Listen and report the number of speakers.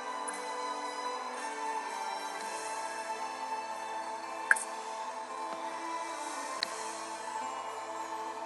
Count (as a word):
zero